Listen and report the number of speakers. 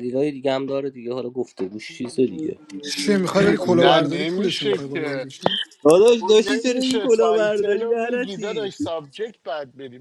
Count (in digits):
3